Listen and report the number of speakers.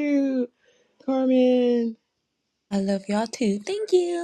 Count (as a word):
two